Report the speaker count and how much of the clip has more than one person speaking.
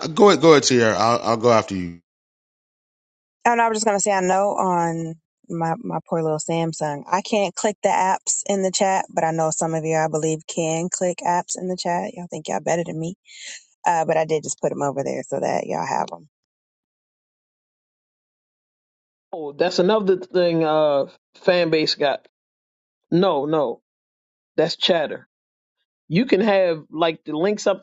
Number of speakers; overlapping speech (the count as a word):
three, no overlap